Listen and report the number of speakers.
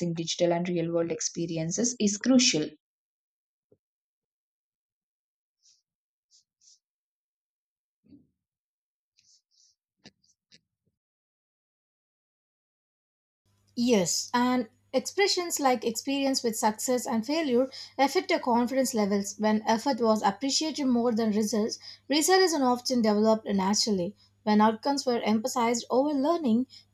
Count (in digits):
2